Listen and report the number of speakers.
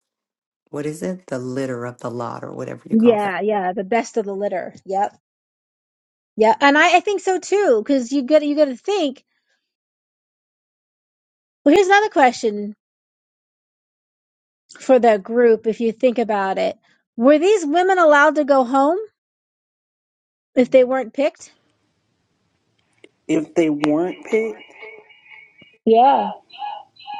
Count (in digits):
3